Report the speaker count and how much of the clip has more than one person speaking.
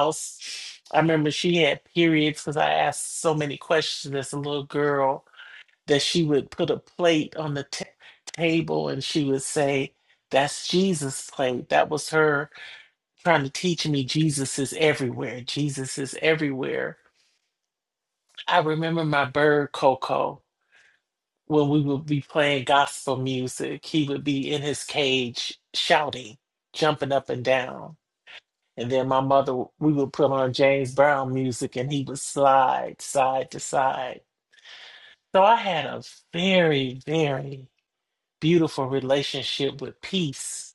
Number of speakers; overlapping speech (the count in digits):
1, no overlap